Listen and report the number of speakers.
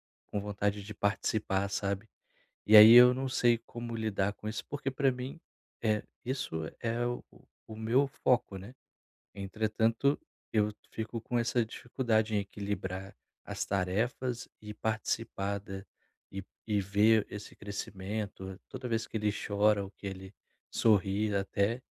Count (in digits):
1